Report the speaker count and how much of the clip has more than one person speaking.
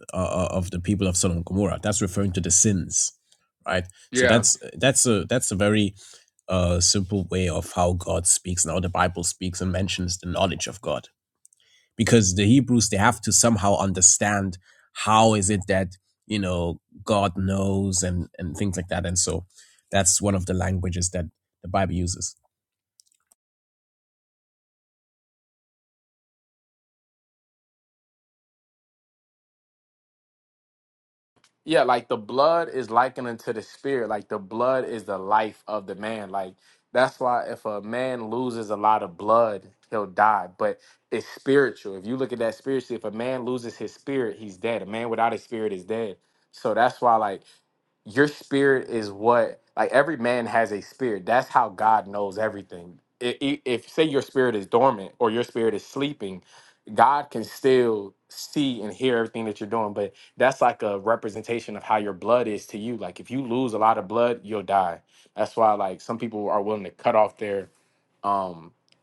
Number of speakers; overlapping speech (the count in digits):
2, under 1%